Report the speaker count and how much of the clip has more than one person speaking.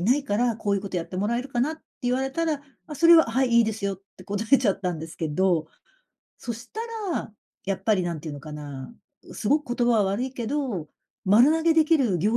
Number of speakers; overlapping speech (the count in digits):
1, no overlap